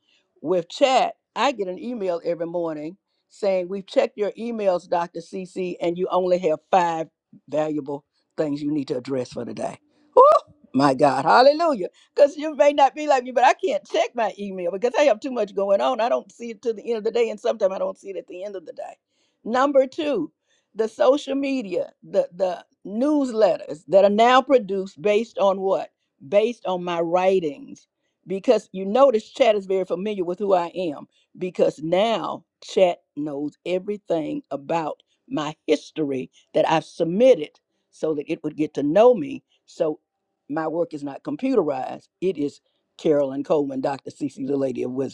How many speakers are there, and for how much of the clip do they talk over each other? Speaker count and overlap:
1, no overlap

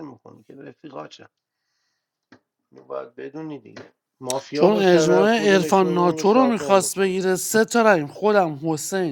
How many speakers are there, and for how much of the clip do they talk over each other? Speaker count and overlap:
2, about 28%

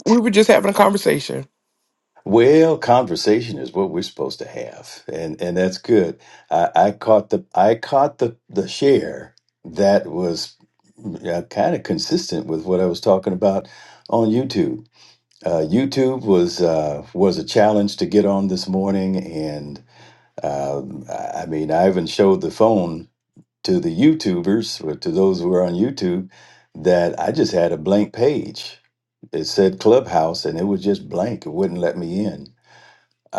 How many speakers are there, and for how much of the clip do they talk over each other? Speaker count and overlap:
2, no overlap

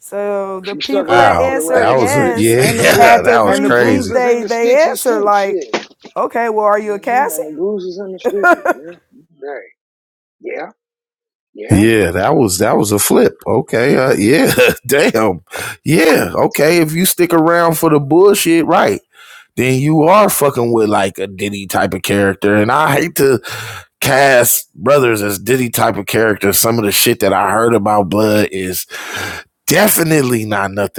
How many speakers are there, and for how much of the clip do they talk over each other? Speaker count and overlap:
3, about 17%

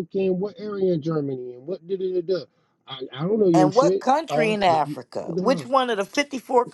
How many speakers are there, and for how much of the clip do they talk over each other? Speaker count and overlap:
2, about 32%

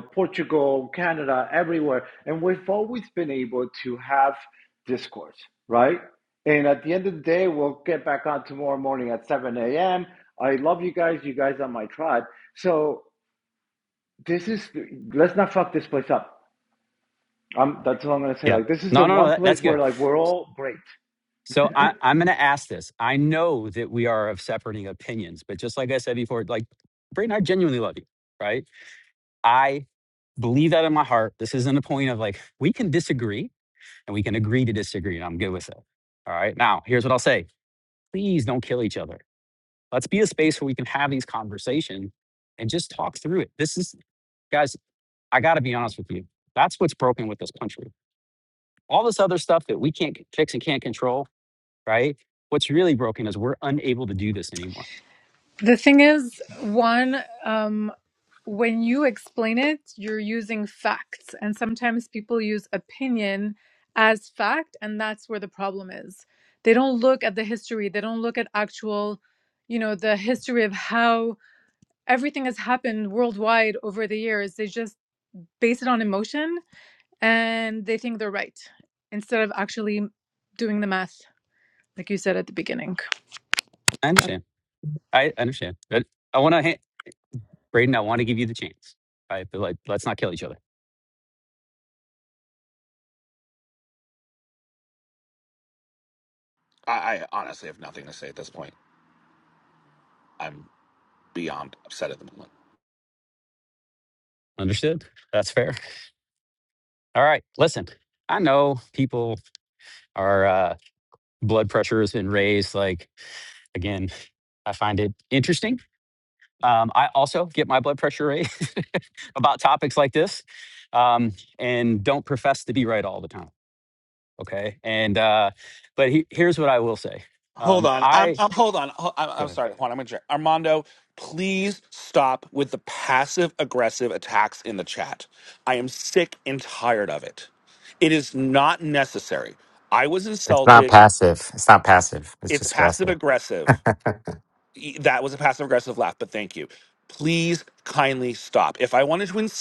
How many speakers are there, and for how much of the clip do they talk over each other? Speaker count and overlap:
5, about 2%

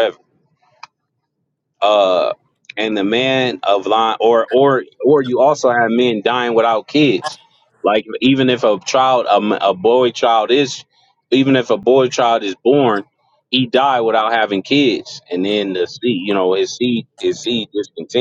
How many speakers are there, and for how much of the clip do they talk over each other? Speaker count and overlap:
1, no overlap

